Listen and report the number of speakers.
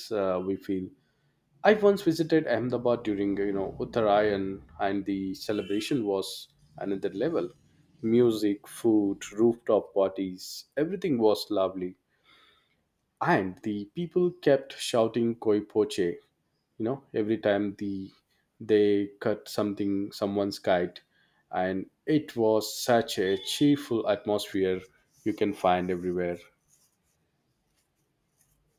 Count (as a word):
one